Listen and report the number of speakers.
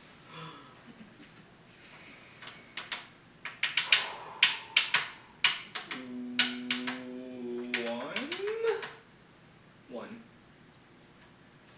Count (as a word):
one